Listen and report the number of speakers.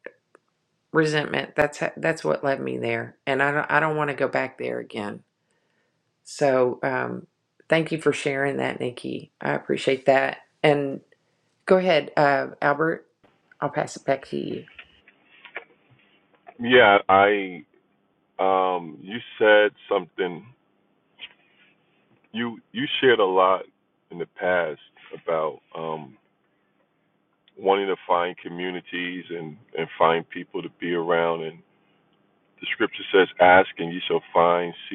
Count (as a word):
two